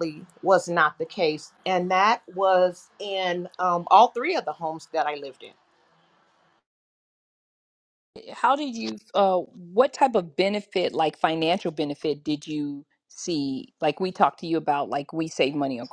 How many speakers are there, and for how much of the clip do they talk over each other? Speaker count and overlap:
2, no overlap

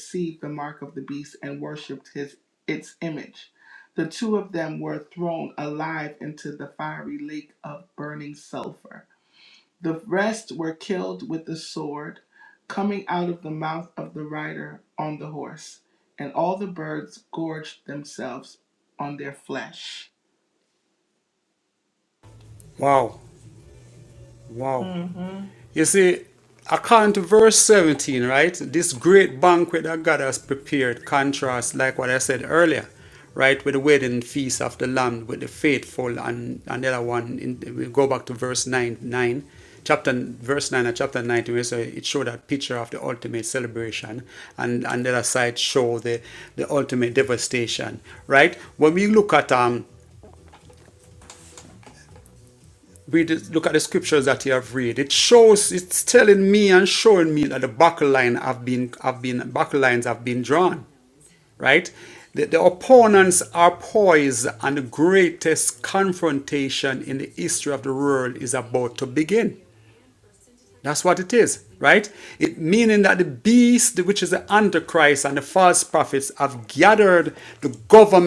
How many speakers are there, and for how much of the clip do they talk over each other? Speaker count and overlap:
2, no overlap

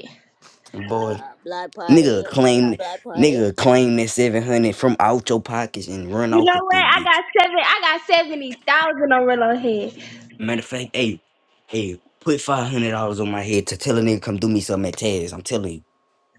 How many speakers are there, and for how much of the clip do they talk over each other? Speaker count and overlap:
3, about 14%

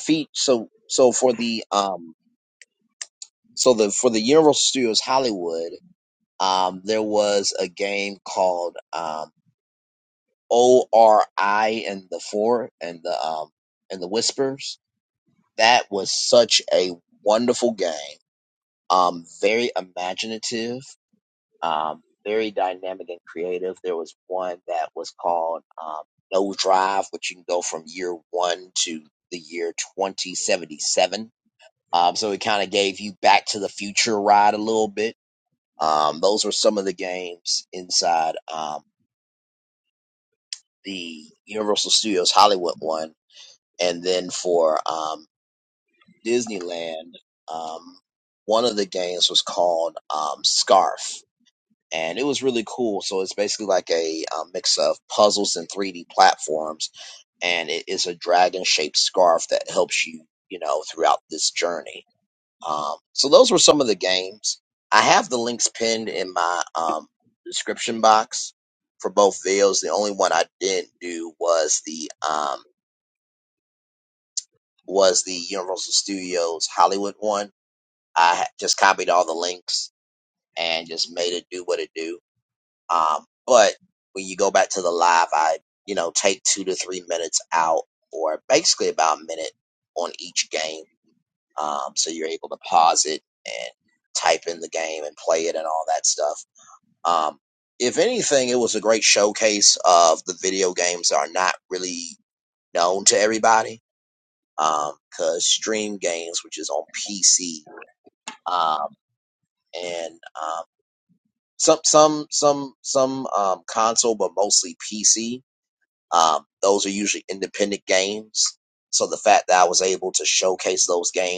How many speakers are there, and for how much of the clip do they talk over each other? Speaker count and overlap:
1, no overlap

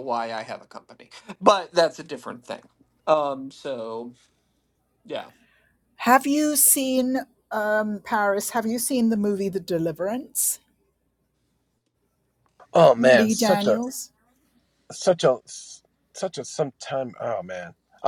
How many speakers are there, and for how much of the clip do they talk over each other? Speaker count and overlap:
3, about 4%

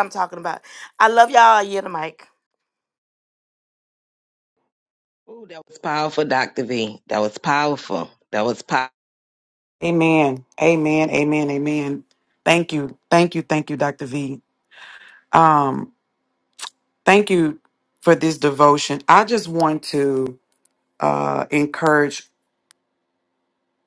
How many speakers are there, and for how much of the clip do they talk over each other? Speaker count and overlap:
3, no overlap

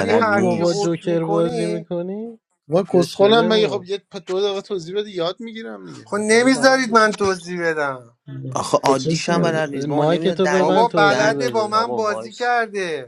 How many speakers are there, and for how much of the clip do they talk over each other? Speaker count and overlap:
4, about 56%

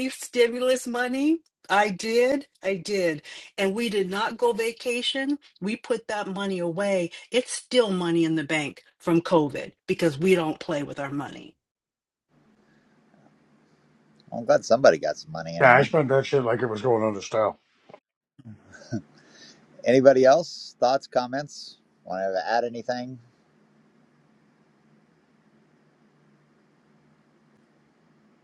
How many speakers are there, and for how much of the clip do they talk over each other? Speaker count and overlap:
3, about 1%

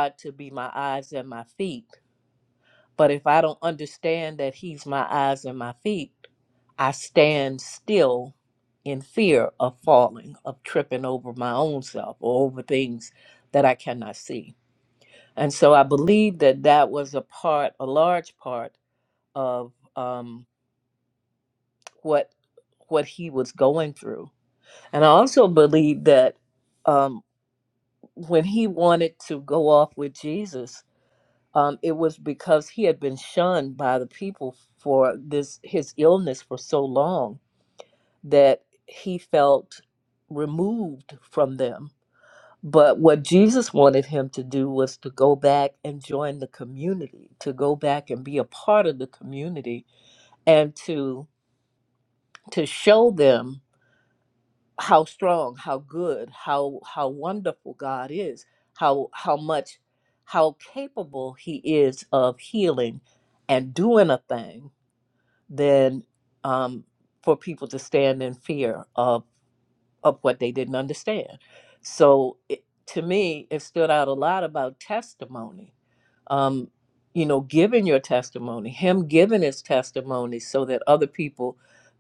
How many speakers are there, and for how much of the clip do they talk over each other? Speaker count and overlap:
1, no overlap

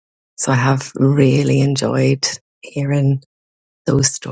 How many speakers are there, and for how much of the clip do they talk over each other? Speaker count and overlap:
1, no overlap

